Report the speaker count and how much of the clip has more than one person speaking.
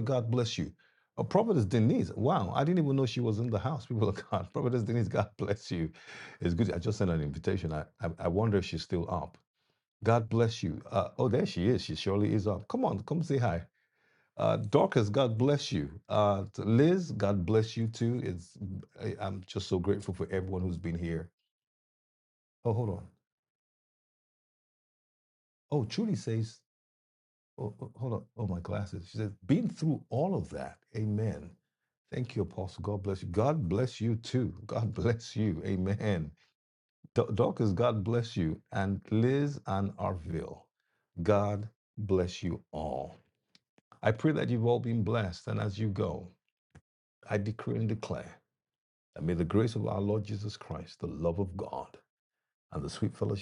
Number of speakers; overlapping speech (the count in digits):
1, no overlap